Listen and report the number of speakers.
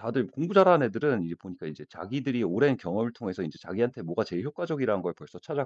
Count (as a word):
one